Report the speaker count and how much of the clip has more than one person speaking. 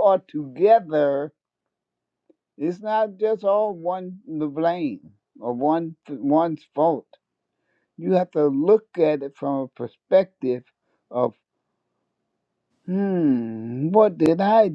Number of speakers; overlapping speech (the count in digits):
1, no overlap